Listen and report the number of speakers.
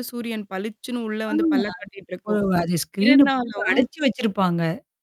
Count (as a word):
two